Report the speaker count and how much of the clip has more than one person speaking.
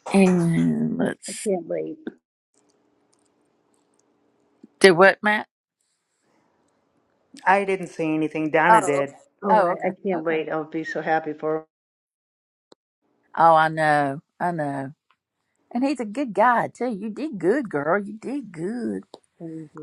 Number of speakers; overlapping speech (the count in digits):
3, about 8%